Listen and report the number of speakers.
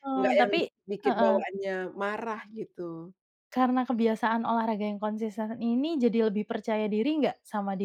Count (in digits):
2